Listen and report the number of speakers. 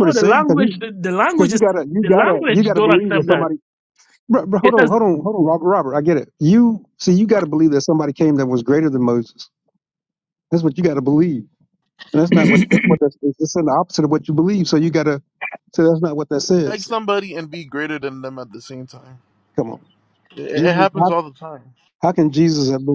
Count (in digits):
3